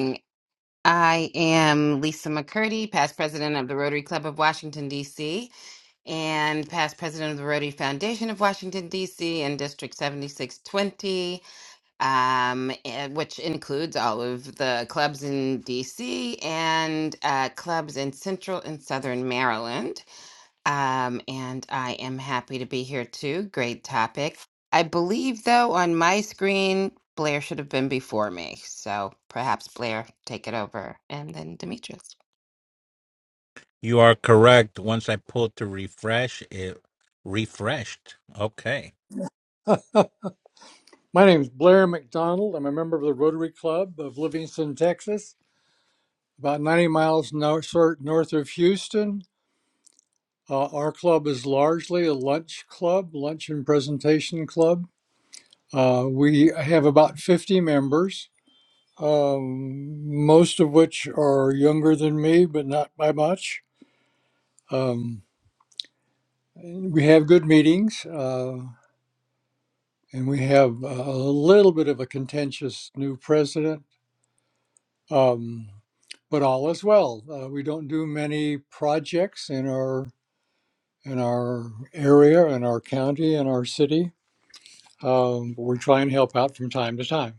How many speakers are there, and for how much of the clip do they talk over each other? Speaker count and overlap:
3, no overlap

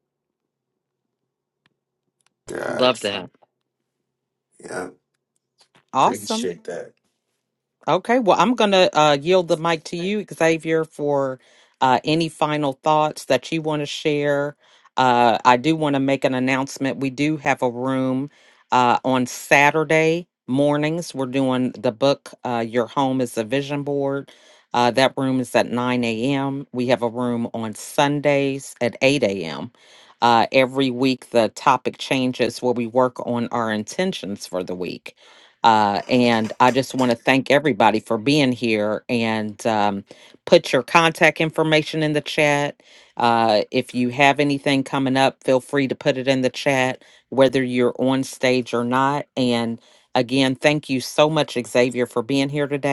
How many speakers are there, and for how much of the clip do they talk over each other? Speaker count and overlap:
2, about 2%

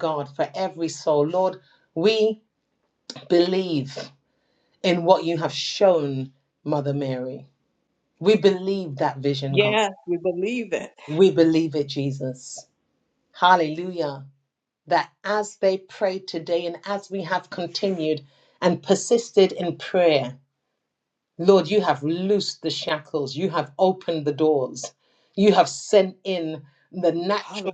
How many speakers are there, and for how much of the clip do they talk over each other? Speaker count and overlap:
2, about 2%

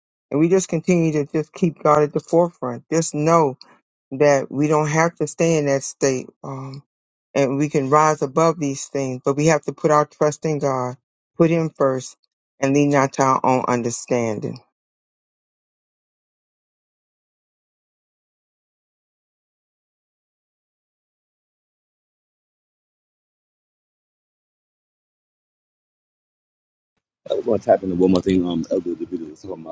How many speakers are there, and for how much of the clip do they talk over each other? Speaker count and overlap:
2, no overlap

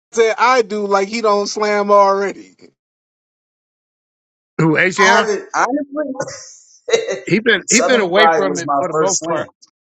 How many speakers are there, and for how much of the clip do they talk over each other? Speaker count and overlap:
3, about 20%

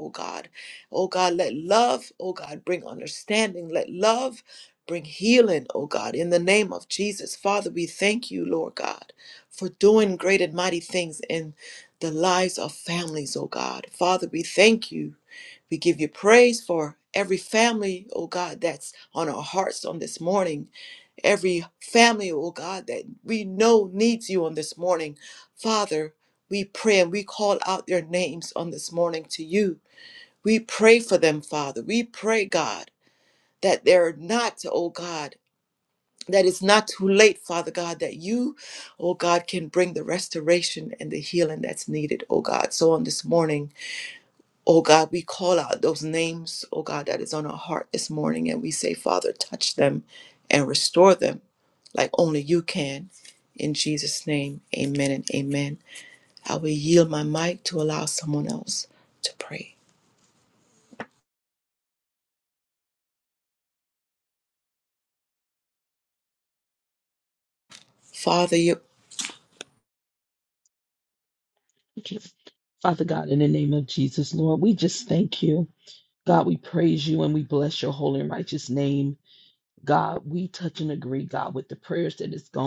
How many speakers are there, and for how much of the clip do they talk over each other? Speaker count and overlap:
2, no overlap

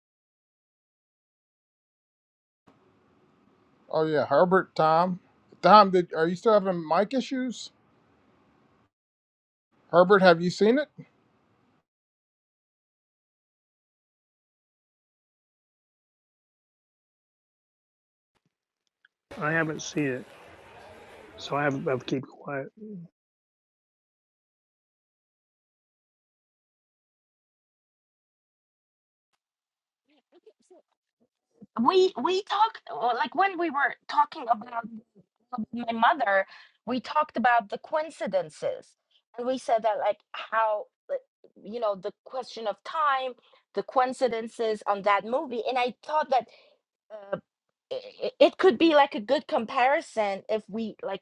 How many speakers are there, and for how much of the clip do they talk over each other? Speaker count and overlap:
3, no overlap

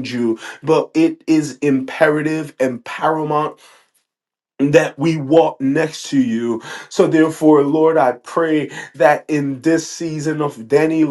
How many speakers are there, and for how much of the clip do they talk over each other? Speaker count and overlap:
1, no overlap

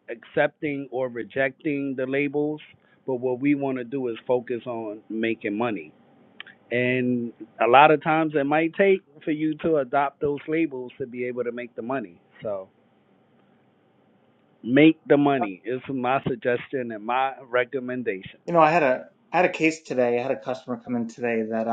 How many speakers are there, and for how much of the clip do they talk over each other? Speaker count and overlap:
2, no overlap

